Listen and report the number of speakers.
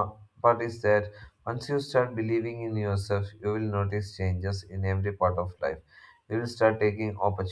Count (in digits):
1